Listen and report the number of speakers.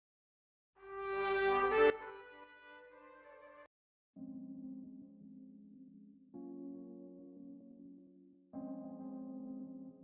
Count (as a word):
zero